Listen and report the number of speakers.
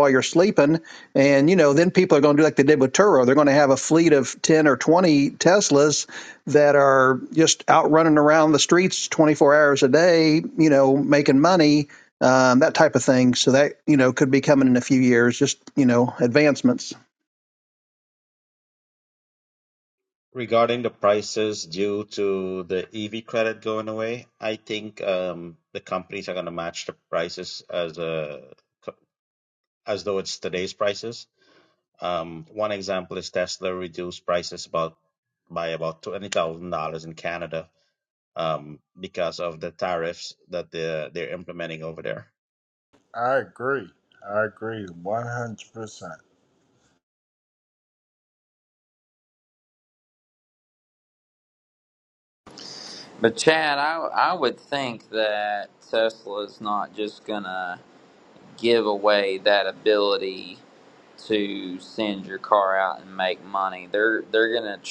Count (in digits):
4